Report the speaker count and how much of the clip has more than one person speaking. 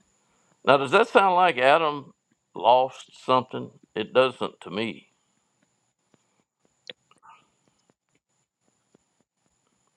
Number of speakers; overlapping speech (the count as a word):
one, no overlap